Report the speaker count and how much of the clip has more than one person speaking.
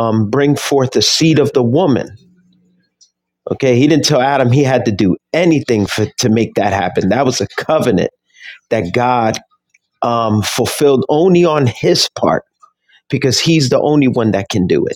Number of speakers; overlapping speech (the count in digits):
1, no overlap